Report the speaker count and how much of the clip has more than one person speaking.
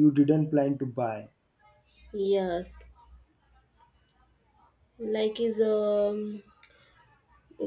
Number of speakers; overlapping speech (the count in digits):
2, no overlap